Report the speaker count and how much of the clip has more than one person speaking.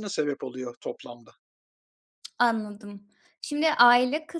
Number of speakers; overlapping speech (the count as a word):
two, no overlap